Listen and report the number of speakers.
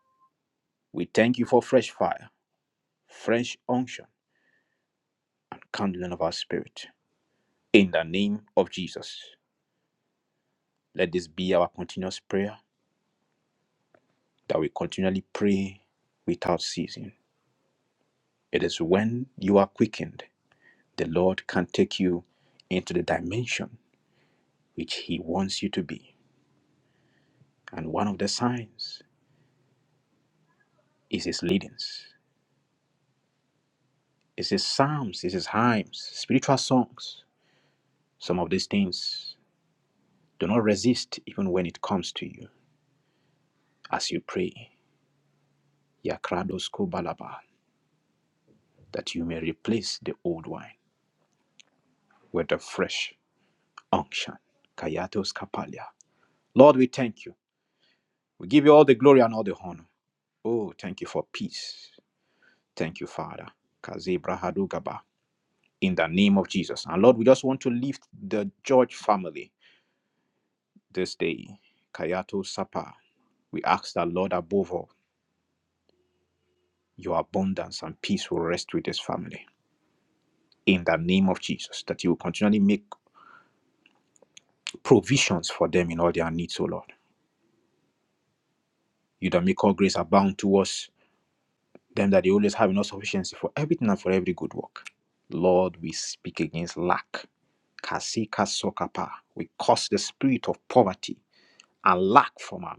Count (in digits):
1